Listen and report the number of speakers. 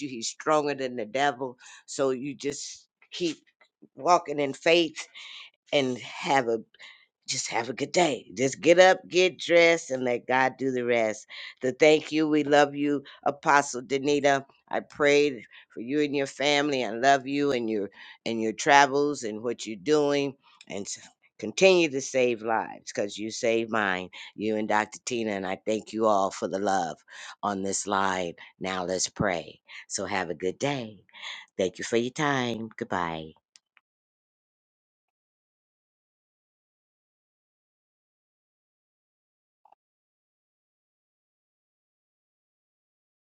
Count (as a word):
one